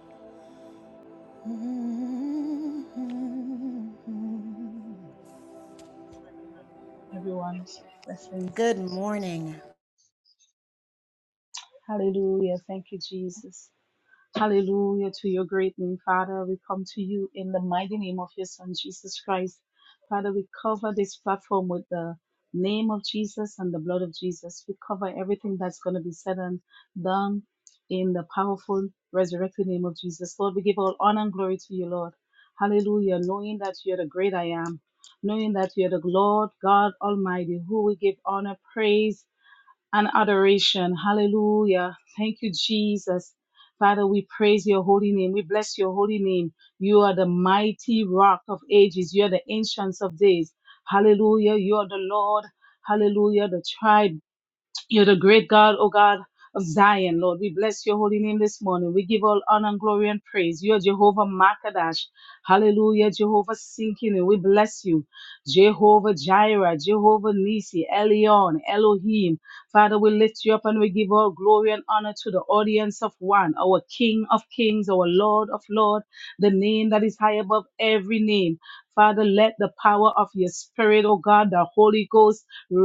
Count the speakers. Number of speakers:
2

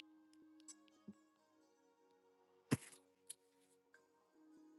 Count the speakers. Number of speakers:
0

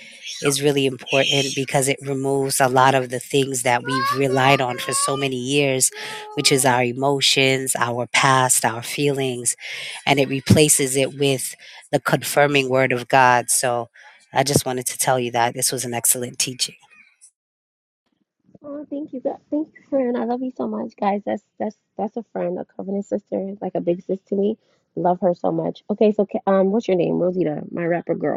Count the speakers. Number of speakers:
2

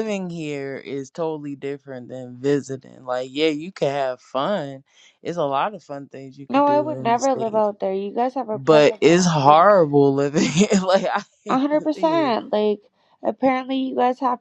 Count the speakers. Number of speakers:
2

